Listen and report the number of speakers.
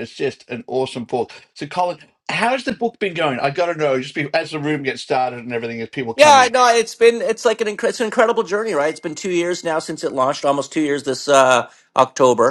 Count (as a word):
two